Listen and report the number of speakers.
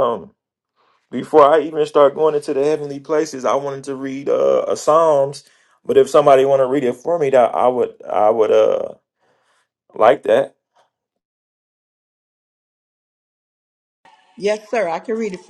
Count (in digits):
2